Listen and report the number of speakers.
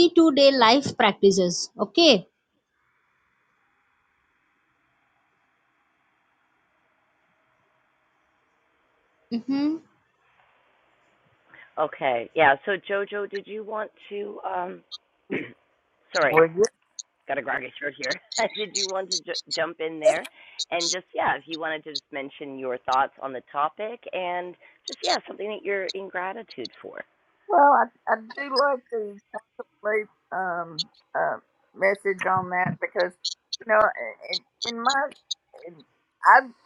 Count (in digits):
3